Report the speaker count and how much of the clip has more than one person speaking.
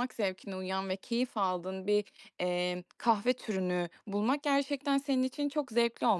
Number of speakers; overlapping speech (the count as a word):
one, no overlap